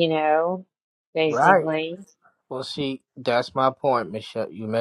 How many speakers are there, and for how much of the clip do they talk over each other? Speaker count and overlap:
2, about 7%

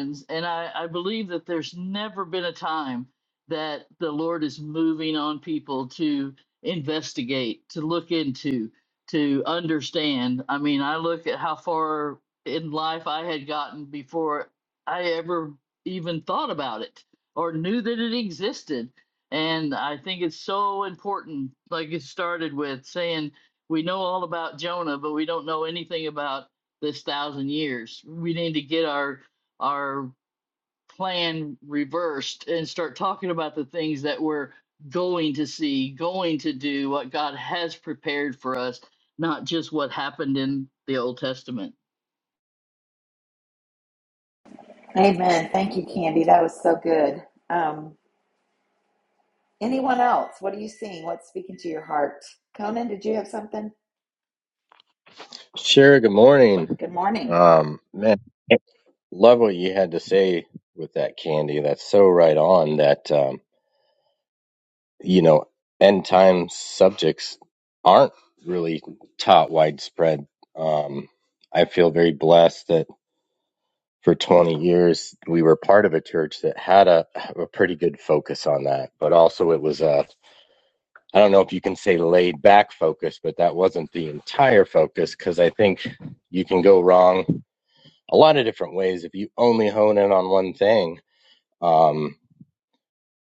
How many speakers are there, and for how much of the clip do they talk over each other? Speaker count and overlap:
3, under 1%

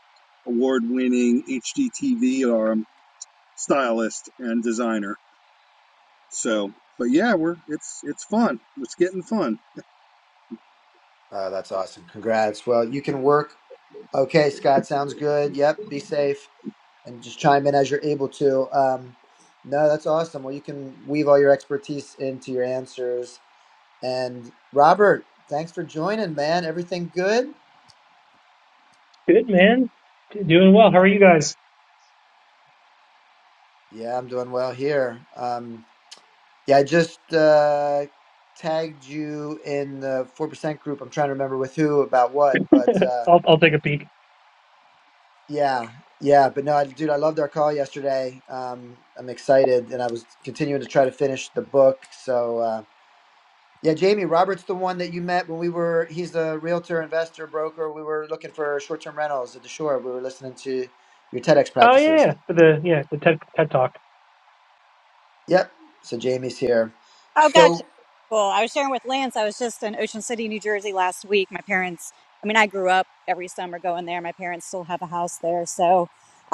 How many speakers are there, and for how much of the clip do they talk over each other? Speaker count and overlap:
4, about 1%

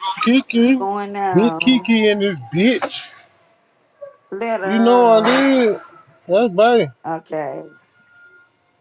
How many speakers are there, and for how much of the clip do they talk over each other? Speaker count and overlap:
2, about 17%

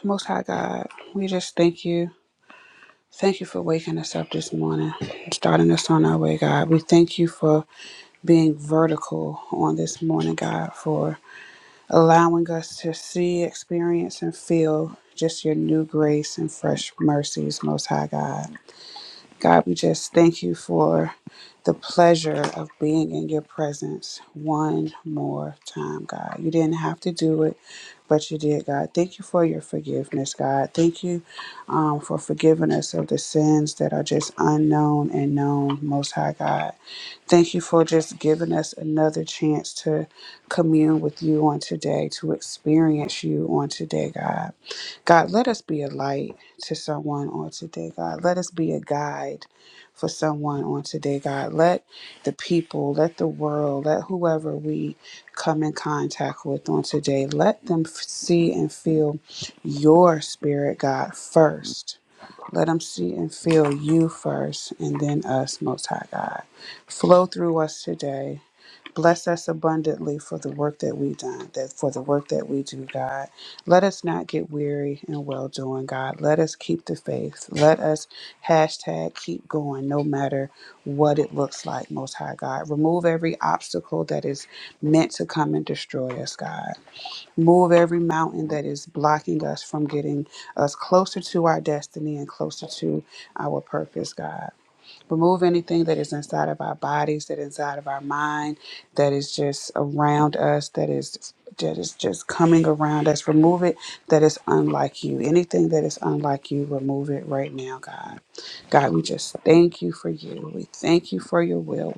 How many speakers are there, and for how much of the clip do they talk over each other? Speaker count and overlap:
1, no overlap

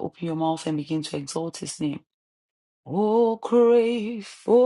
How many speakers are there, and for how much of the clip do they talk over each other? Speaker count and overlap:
1, no overlap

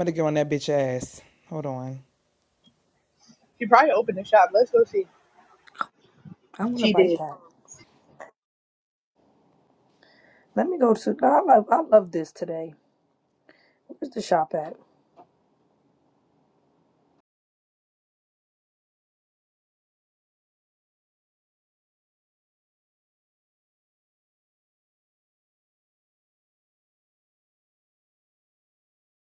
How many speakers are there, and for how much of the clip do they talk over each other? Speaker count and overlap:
3, about 1%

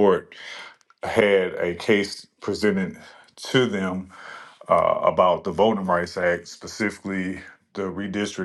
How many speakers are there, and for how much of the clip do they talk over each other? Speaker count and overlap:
1, no overlap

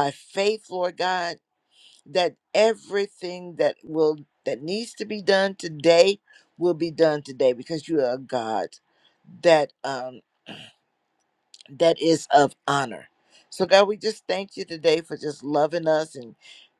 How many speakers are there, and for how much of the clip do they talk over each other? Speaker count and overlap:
1, no overlap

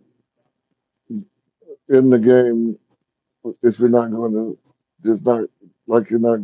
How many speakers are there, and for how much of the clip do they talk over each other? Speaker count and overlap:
1, no overlap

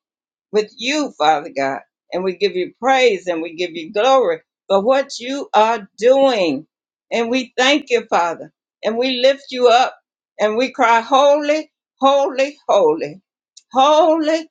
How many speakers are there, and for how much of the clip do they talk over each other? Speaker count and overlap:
1, no overlap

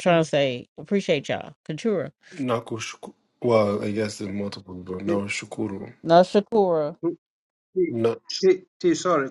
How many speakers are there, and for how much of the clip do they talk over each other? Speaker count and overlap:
3, about 2%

